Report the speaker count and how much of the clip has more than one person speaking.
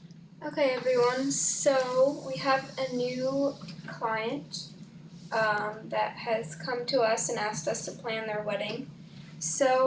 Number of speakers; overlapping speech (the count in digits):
1, no overlap